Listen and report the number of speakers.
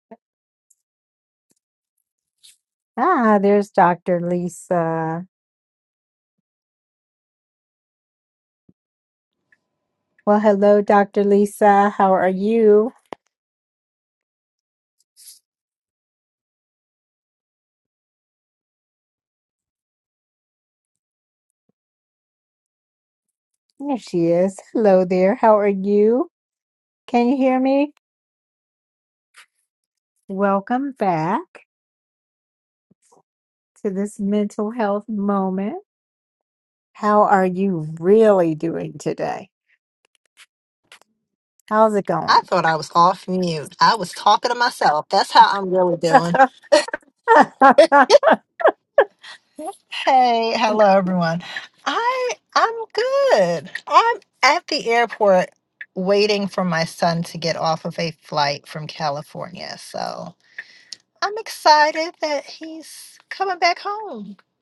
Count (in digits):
2